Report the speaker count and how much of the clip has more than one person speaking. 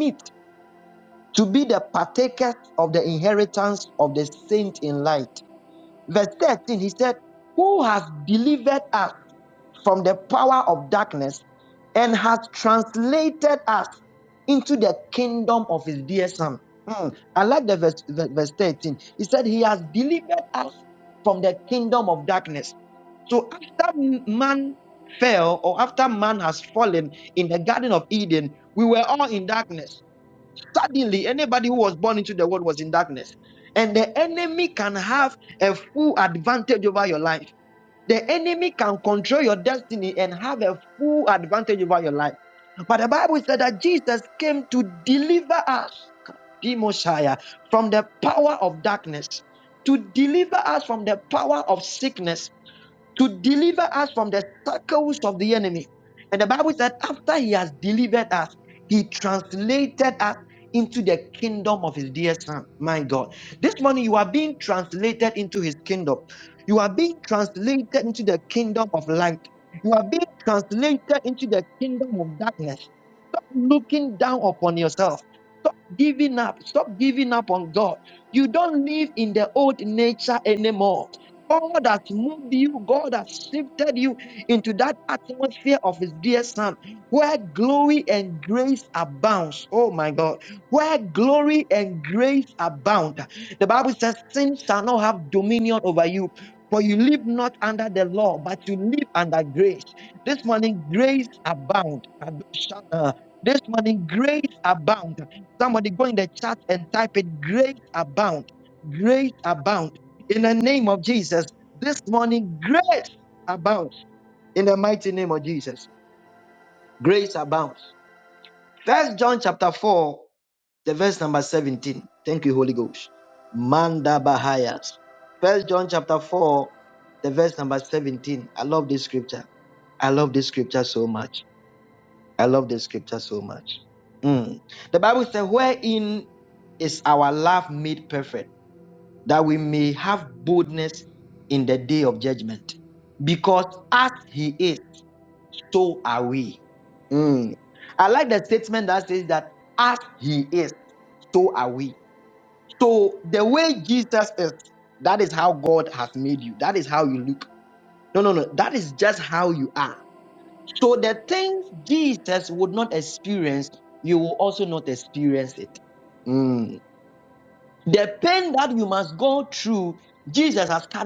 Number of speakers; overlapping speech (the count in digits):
1, no overlap